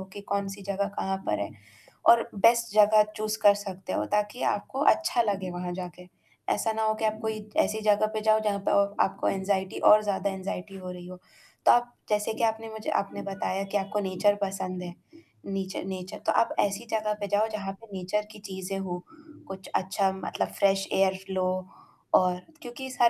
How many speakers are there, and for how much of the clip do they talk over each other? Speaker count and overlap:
1, no overlap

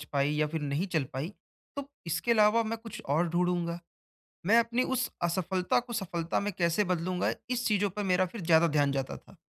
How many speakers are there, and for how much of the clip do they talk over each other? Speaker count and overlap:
1, no overlap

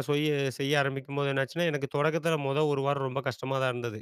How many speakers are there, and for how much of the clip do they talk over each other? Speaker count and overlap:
1, no overlap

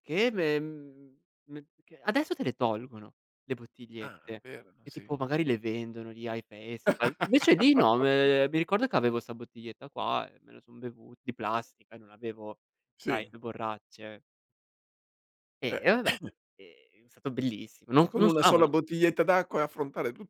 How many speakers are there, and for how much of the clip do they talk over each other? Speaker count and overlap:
2, about 6%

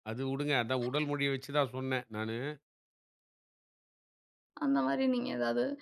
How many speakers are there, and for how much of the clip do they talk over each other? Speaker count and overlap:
2, no overlap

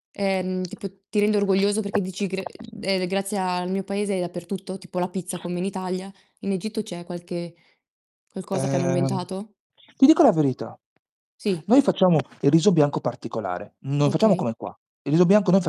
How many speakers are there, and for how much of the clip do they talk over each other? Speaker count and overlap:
2, about 7%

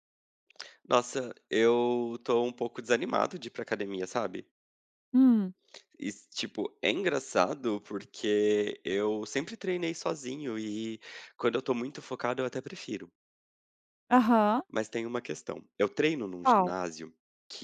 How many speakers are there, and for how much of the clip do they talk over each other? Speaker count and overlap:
2, about 2%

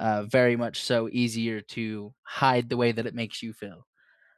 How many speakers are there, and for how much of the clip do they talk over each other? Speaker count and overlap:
1, no overlap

